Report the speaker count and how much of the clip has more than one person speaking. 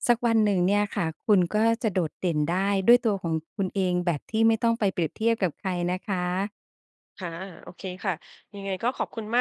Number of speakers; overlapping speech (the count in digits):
2, no overlap